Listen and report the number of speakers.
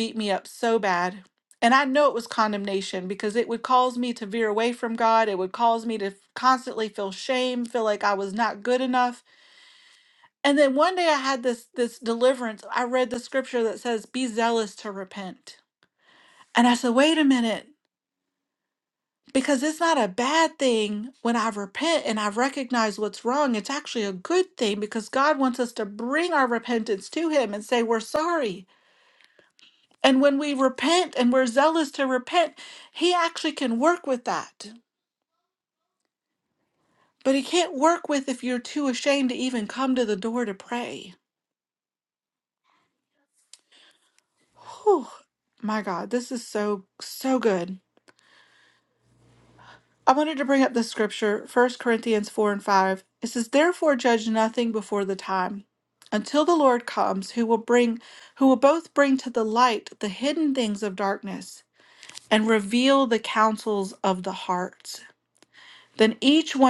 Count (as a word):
one